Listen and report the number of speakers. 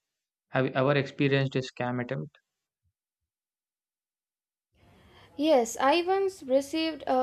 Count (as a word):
two